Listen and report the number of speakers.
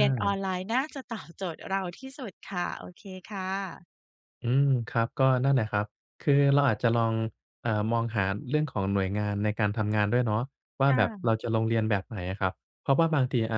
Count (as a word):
two